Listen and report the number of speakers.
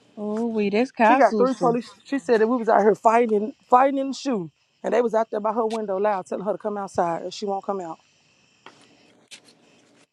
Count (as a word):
two